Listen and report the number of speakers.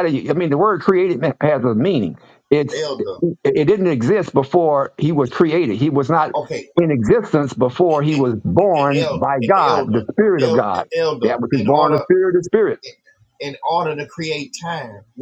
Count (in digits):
2